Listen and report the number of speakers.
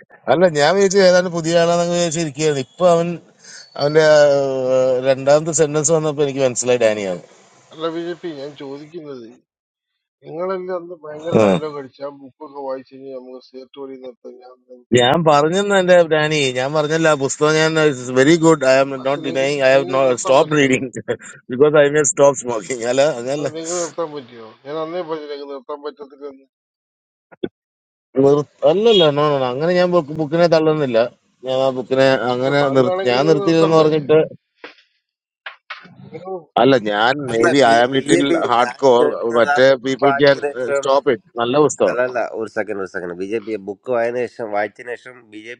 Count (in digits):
3